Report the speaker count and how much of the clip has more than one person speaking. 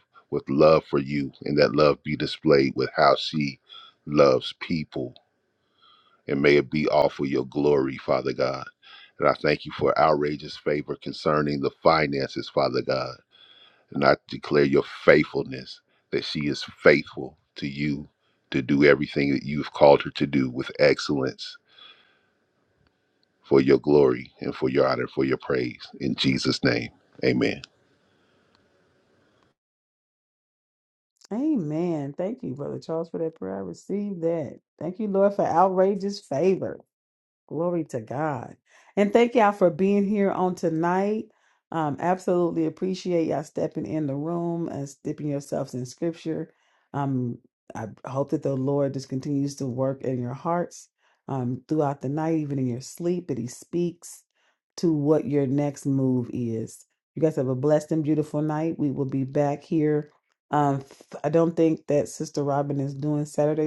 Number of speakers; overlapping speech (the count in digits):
2, no overlap